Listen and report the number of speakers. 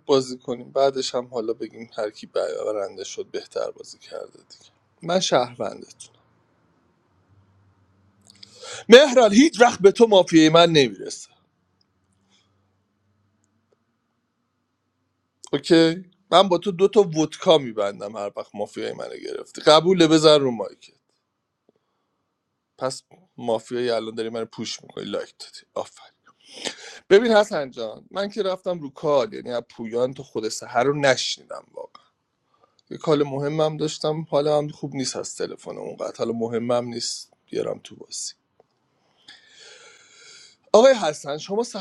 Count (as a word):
one